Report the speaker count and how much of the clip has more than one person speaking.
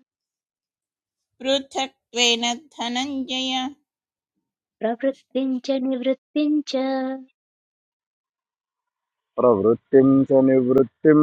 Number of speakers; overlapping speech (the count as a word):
three, no overlap